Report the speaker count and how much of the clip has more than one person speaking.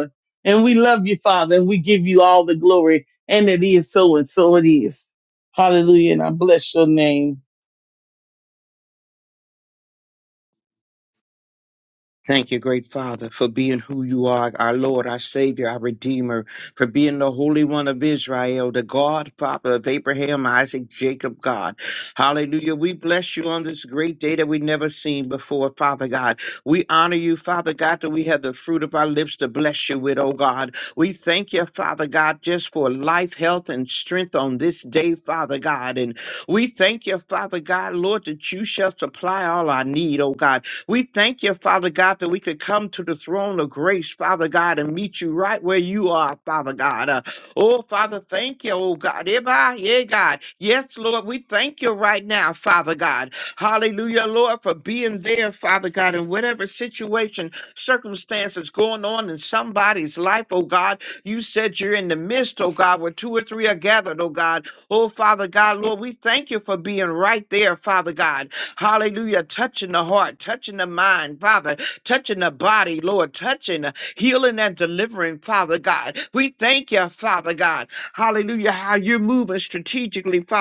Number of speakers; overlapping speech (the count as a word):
two, no overlap